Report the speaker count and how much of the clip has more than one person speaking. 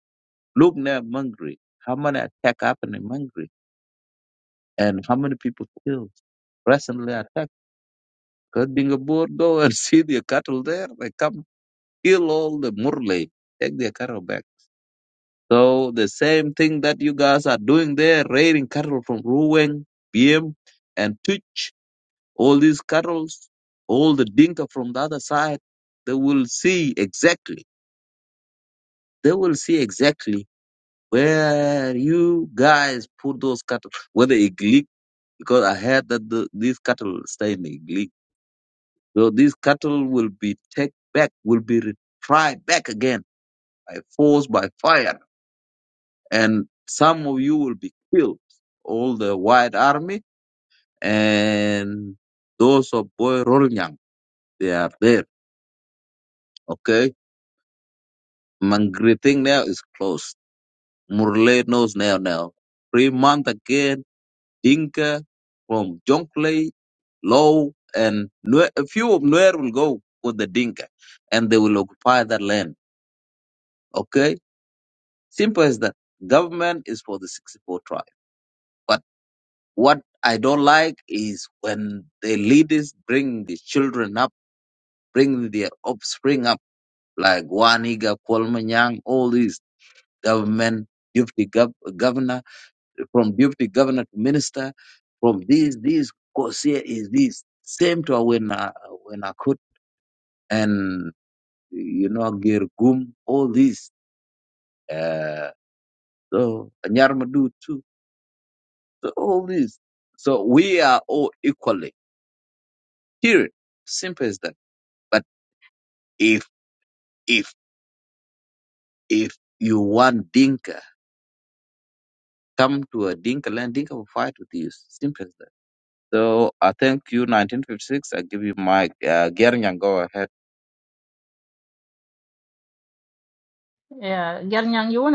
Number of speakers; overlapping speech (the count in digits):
2, no overlap